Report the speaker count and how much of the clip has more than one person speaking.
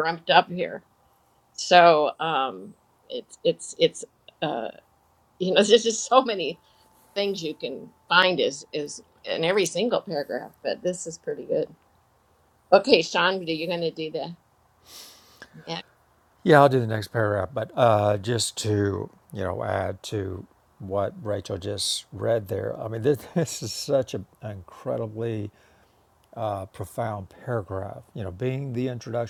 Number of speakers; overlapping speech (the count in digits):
2, no overlap